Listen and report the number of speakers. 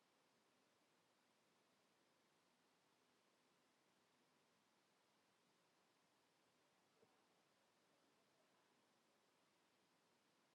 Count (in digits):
0